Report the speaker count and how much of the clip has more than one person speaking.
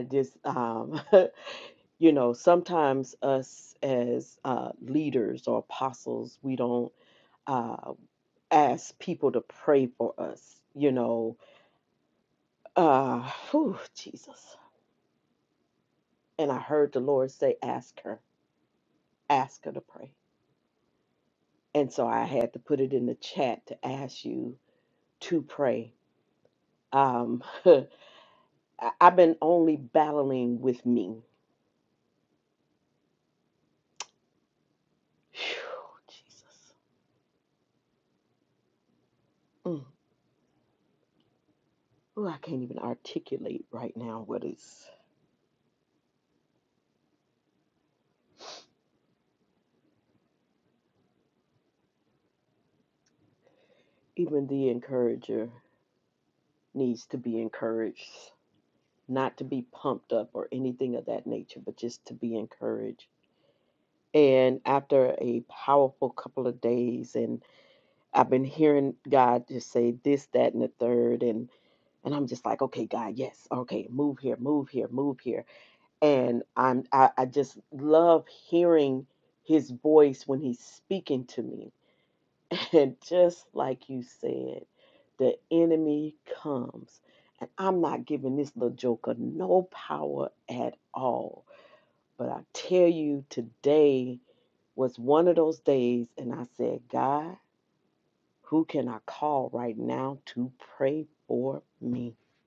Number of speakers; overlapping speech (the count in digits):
1, no overlap